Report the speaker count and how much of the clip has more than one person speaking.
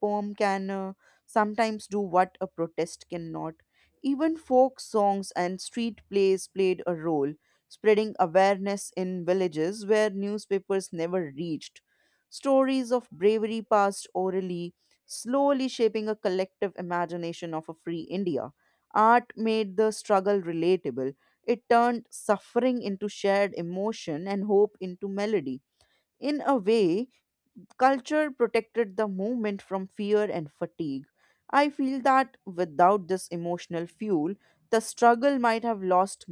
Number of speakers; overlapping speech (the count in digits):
1, no overlap